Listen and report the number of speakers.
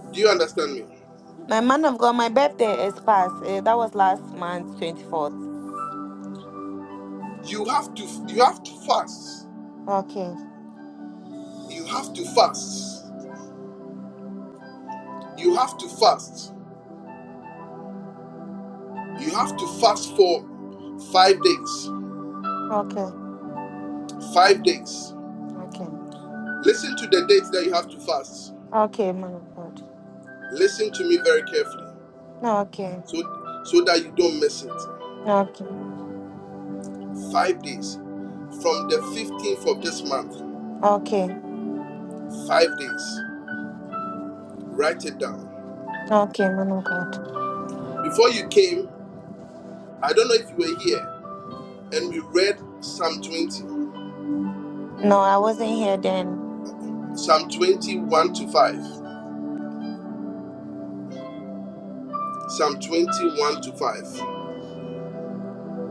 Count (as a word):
two